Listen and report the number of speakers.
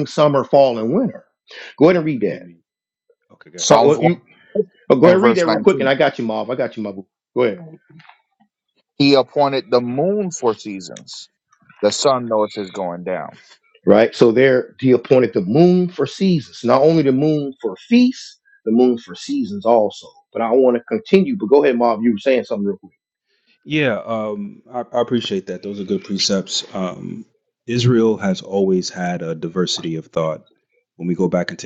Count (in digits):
3